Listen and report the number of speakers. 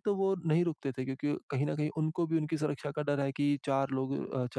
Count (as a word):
one